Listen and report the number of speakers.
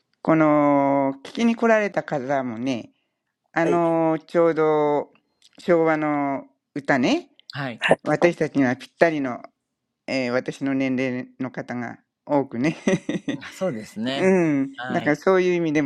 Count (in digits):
2